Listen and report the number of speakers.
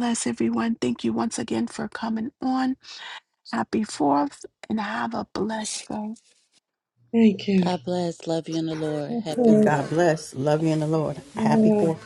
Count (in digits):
4